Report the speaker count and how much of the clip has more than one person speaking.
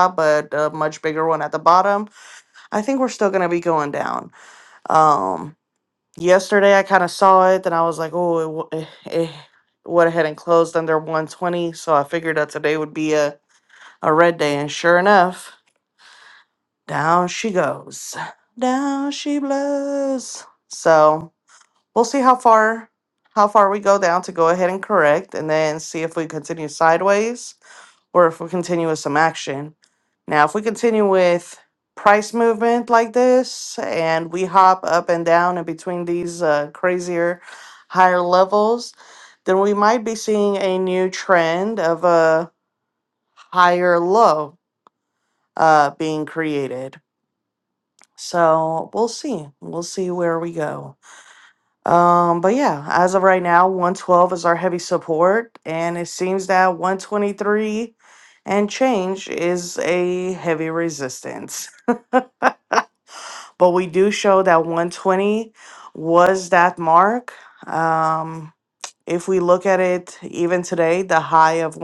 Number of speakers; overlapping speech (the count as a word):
one, no overlap